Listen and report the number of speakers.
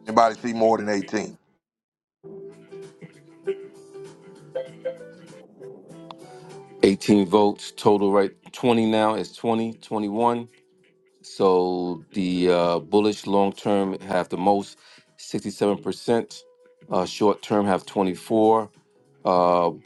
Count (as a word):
two